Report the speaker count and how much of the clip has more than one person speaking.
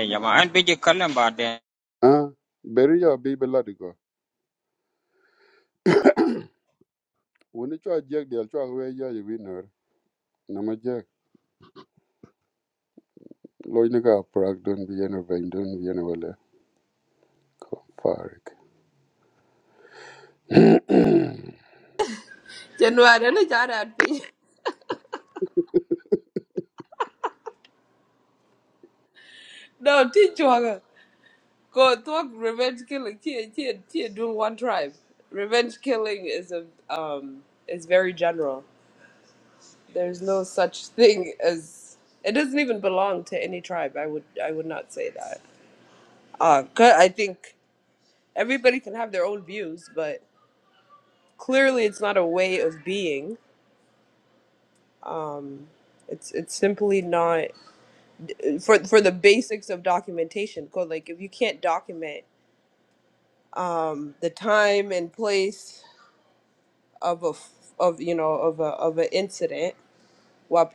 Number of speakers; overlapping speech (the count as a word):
three, no overlap